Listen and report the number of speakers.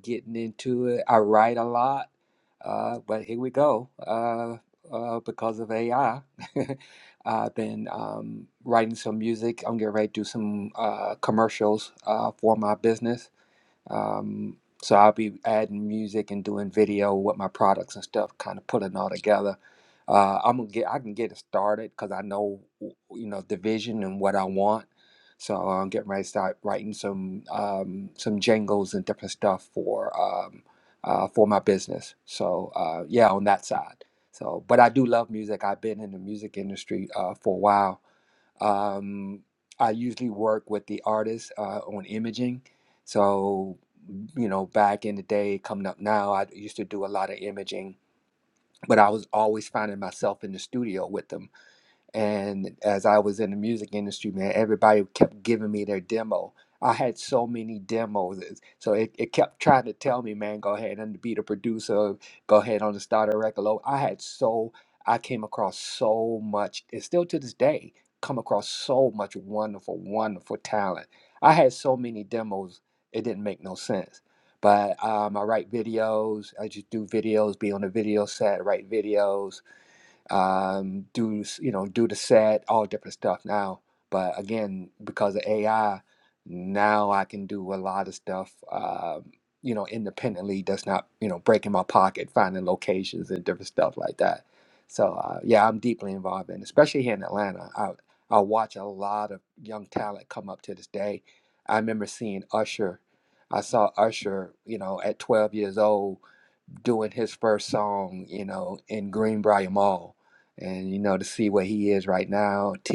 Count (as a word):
one